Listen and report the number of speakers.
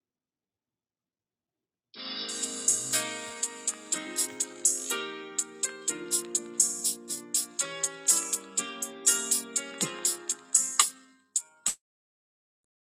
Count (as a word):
zero